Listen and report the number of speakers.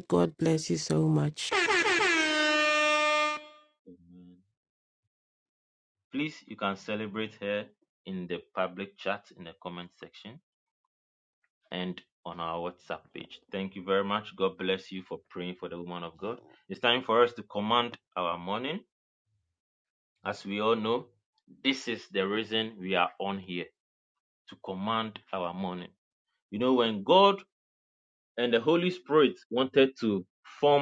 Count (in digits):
2